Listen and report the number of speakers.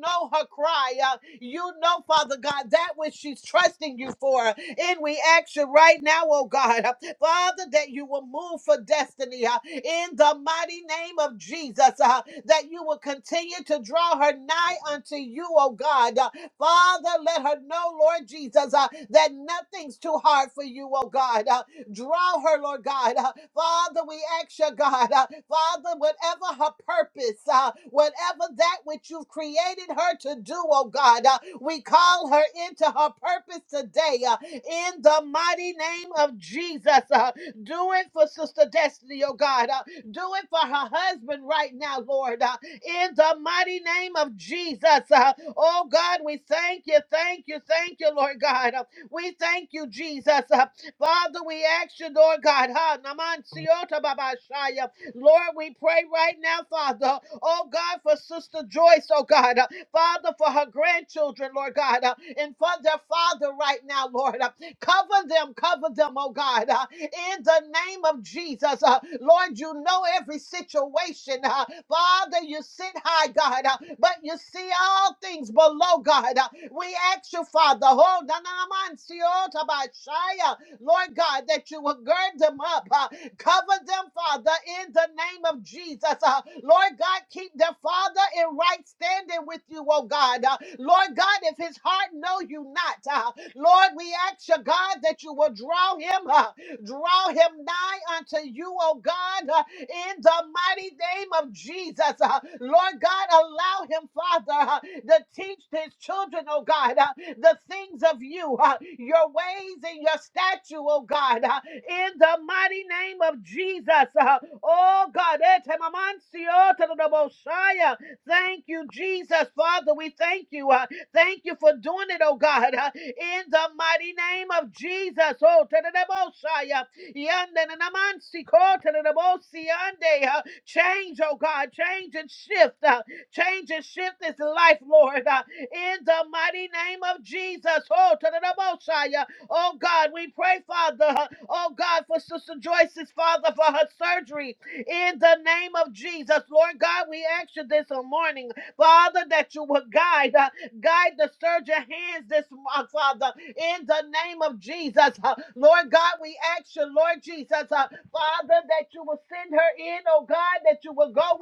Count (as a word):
one